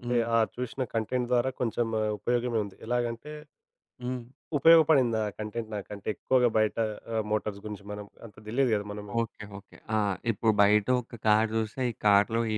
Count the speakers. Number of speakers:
2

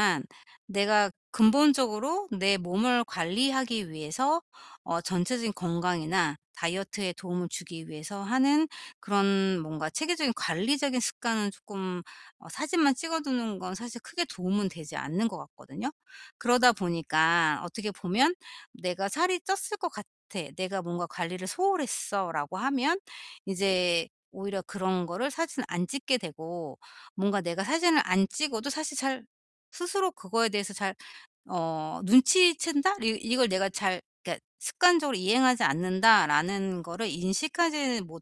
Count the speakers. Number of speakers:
1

